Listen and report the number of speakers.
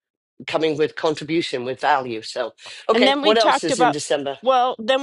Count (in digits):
2